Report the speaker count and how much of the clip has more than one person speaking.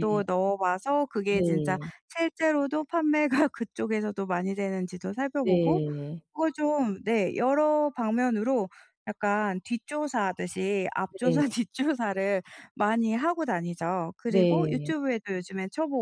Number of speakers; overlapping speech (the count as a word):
two, about 14%